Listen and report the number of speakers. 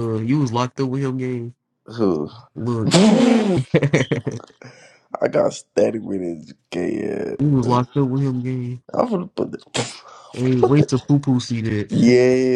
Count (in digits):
2